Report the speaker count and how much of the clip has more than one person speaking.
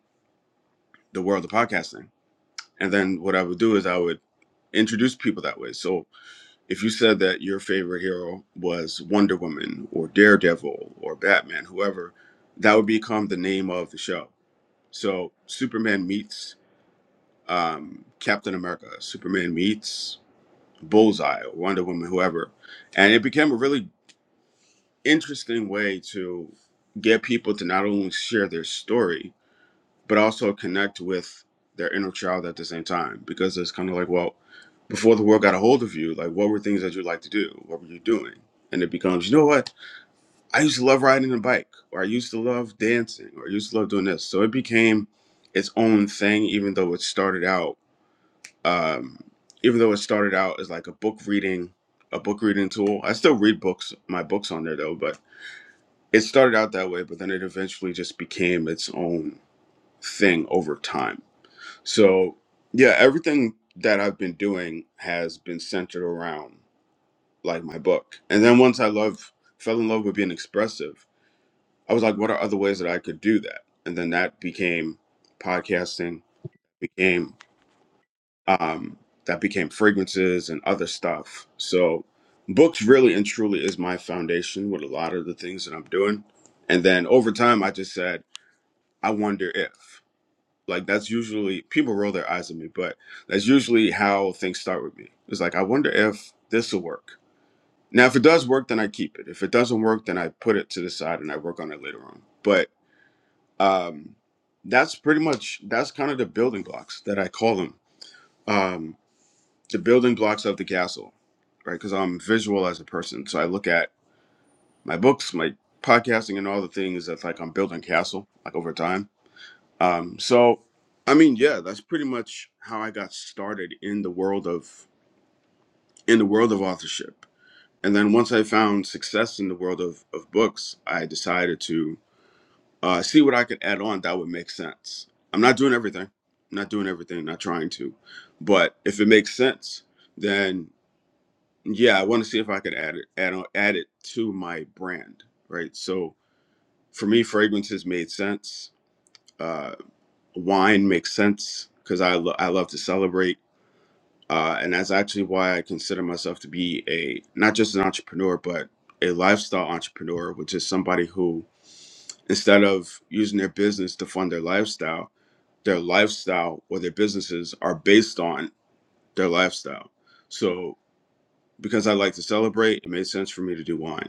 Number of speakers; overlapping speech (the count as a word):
one, no overlap